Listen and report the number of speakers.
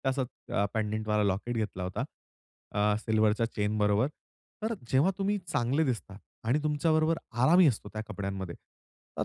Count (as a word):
one